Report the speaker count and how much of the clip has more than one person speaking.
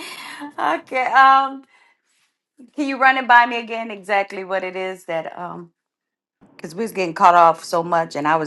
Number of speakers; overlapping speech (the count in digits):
1, no overlap